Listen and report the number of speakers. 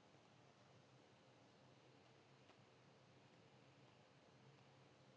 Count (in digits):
0